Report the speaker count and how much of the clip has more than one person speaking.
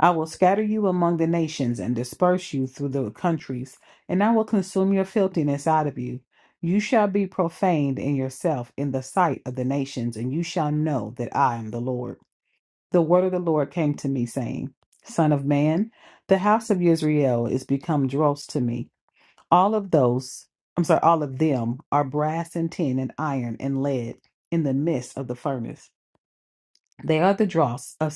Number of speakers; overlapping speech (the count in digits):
1, no overlap